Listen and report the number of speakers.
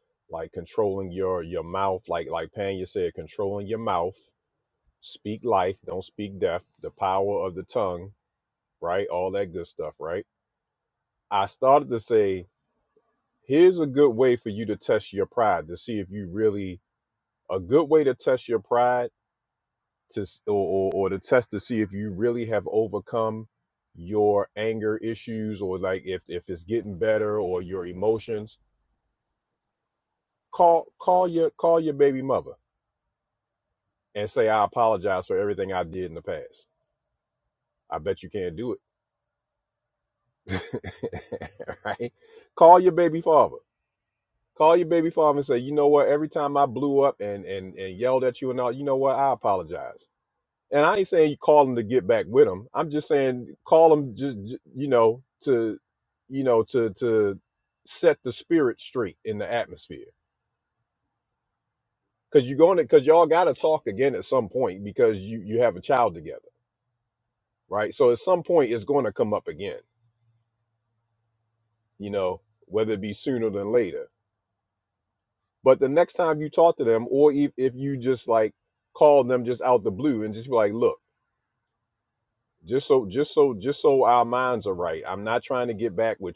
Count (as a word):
one